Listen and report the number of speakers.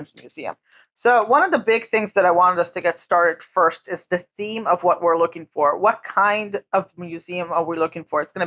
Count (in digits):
1